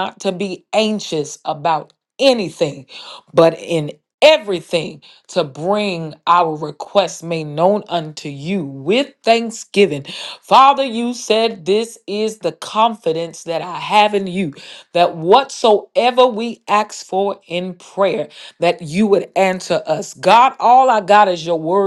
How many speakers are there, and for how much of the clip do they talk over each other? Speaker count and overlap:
one, no overlap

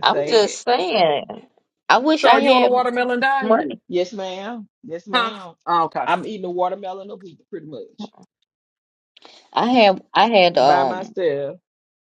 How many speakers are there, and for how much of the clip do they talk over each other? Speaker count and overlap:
three, about 20%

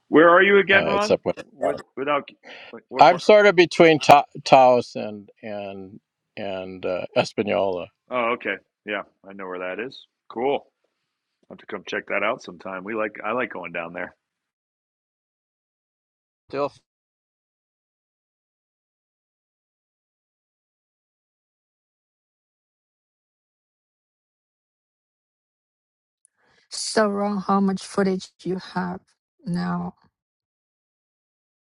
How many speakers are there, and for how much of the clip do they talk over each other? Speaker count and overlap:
three, about 2%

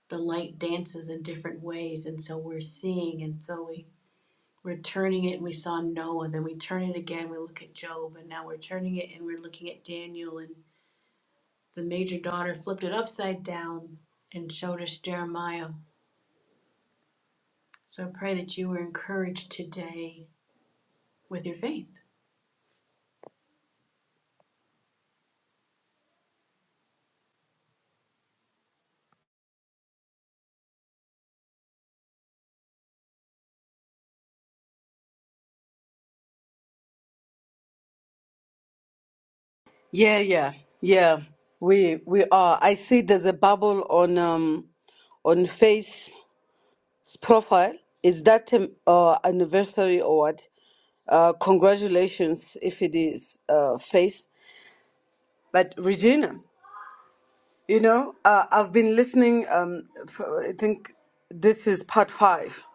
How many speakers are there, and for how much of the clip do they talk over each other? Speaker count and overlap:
two, no overlap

